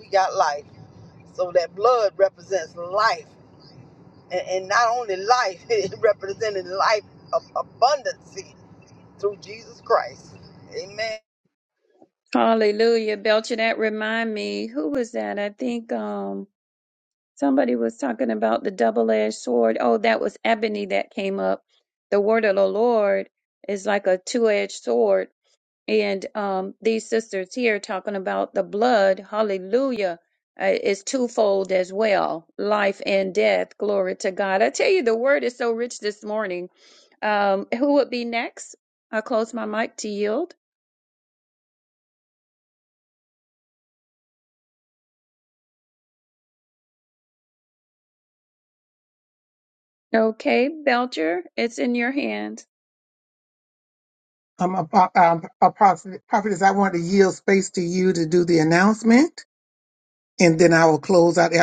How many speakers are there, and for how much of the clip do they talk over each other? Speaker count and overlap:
3, no overlap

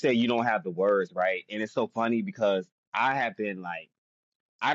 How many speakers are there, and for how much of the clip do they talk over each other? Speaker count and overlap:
1, no overlap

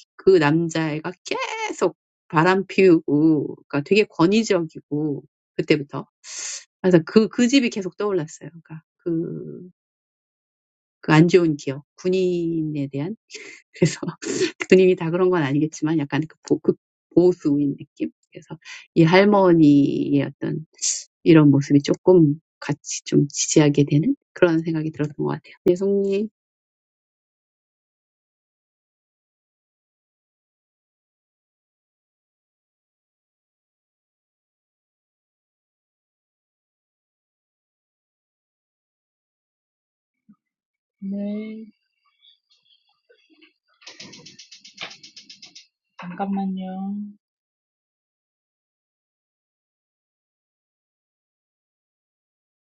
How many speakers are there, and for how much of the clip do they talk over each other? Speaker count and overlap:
2, no overlap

